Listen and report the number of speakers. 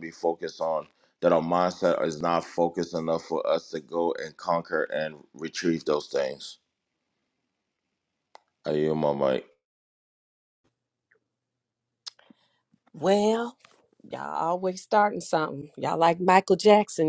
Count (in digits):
2